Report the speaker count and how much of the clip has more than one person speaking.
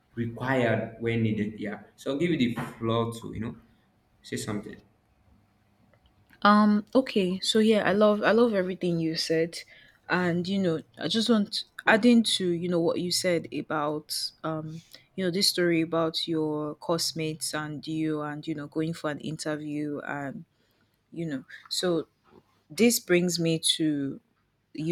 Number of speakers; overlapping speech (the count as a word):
two, no overlap